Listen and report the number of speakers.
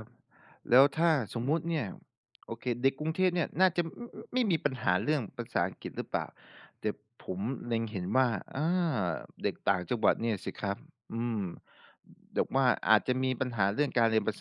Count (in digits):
1